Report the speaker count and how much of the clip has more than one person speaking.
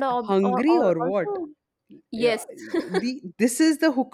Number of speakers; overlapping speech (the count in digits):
2, about 34%